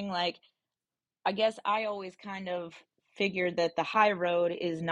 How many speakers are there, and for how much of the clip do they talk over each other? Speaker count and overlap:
1, no overlap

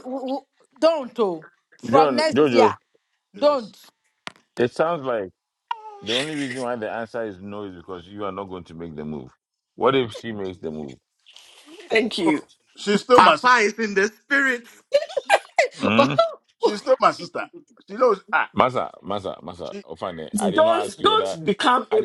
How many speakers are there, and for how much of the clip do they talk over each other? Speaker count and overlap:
5, about 12%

